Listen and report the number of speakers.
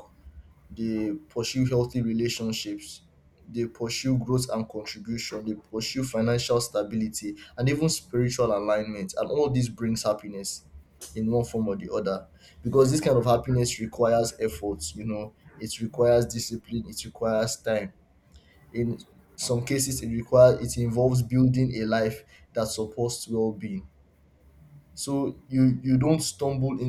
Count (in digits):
1